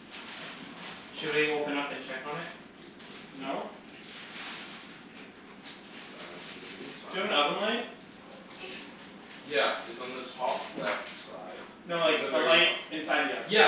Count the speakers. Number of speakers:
three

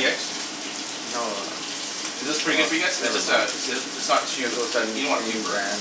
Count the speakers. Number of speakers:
two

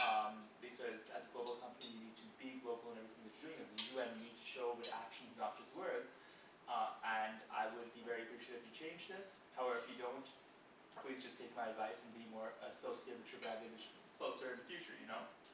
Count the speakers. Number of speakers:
one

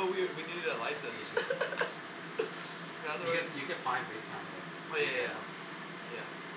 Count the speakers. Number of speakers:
two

